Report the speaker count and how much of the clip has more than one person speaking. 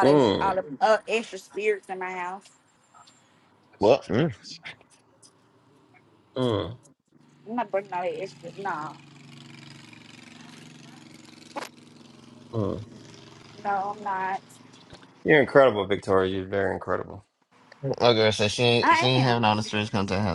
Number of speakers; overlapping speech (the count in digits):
3, about 6%